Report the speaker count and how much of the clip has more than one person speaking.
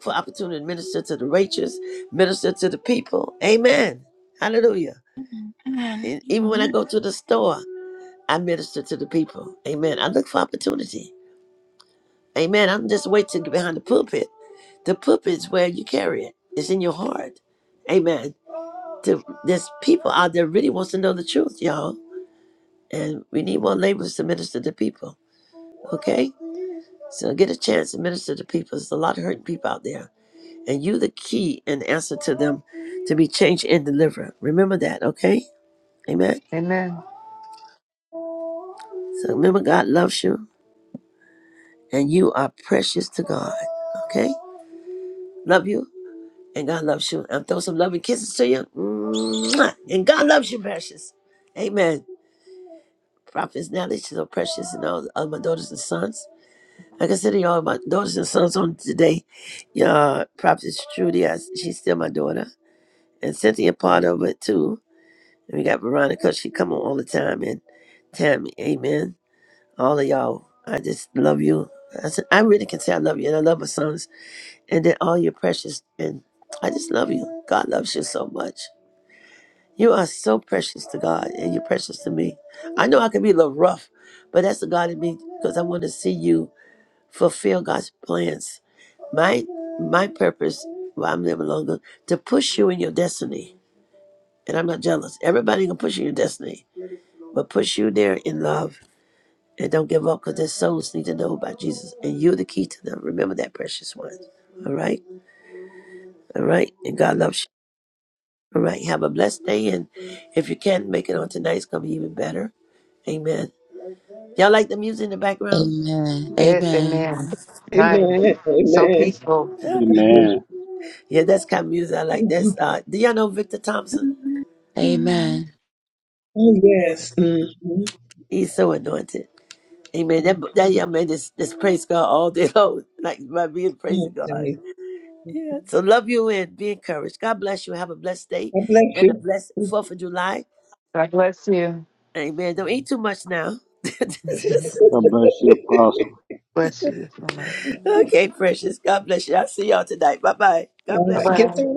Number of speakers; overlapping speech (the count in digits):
6, about 3%